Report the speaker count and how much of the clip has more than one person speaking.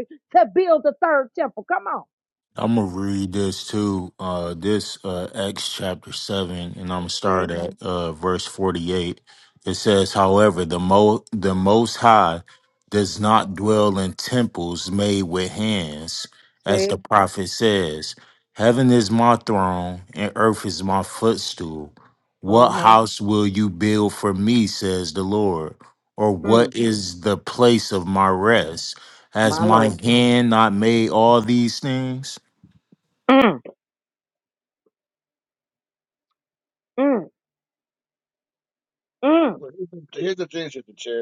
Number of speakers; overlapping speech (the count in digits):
3, about 4%